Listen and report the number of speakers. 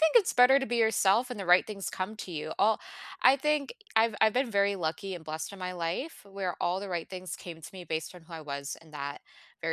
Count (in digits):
1